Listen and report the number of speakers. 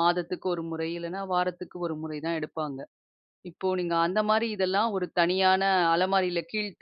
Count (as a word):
one